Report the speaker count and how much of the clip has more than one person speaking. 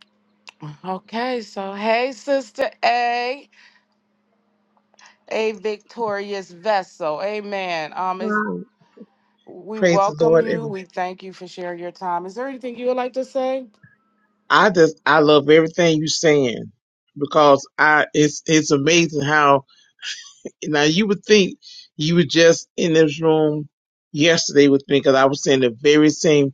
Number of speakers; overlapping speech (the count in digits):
2, about 4%